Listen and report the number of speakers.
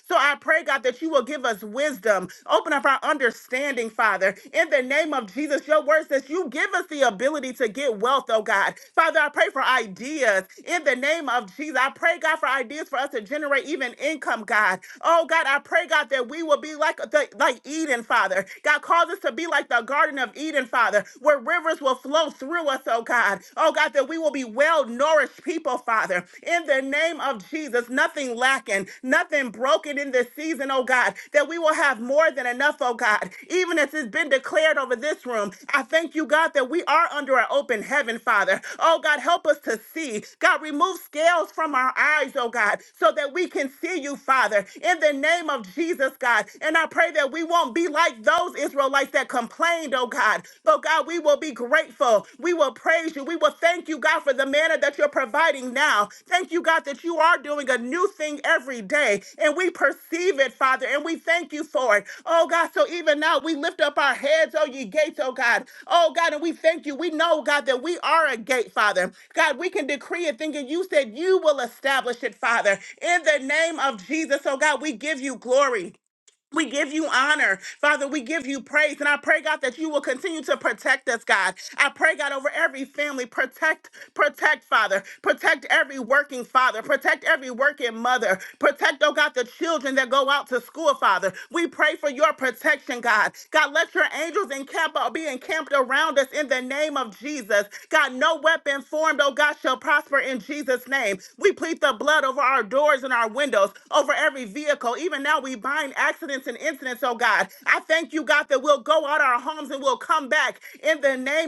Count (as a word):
one